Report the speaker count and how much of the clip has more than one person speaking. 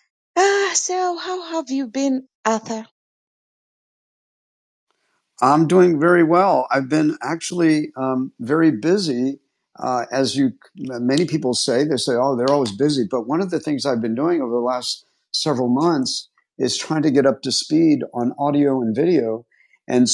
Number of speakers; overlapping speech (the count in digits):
2, no overlap